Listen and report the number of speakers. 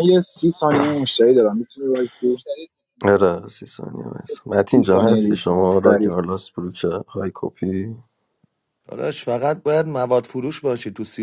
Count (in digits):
3